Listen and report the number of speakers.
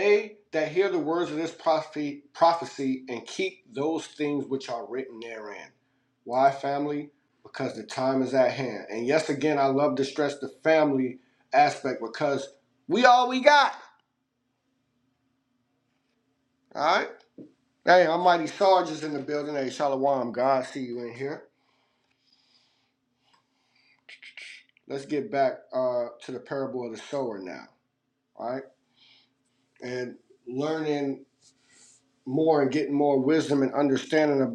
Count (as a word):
one